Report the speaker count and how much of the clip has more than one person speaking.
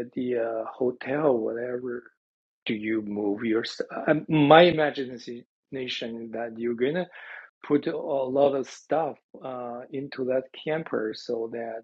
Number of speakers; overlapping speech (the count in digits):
1, no overlap